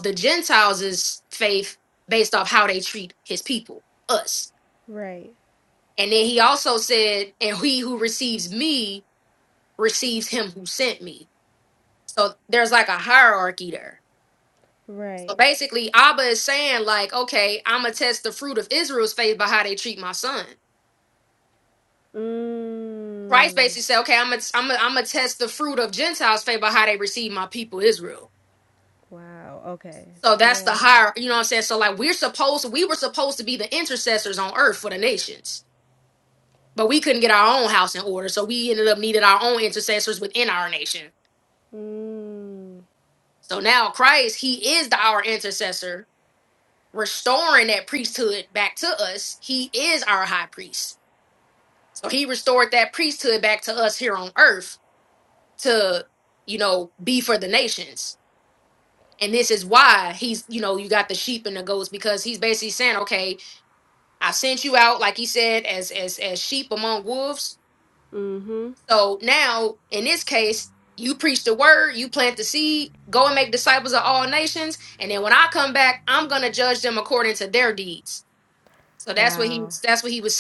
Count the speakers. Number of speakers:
2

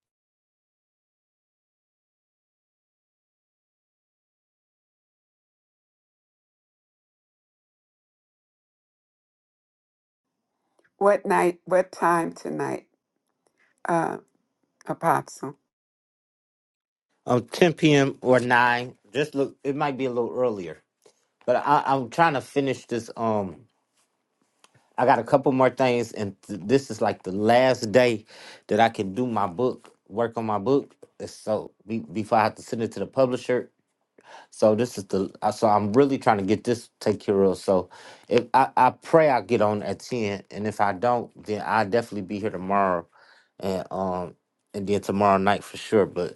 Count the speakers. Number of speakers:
2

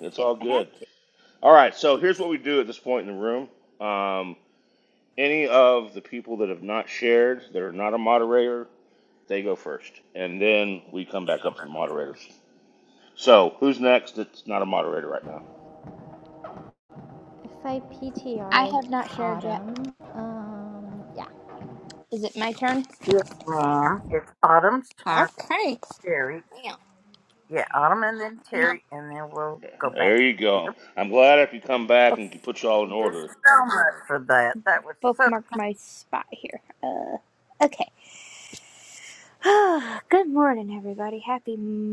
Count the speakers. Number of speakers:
4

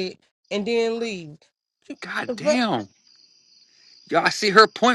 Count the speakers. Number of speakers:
2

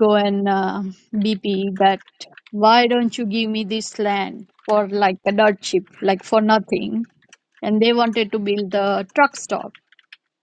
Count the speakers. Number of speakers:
1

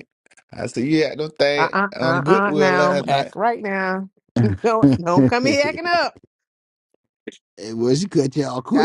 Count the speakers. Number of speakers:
3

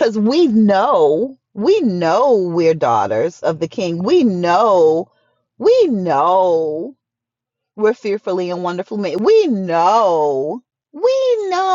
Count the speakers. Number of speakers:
1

